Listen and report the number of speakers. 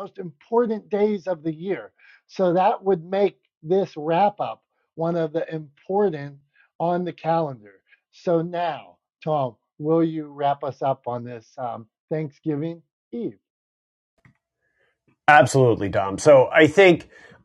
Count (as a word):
two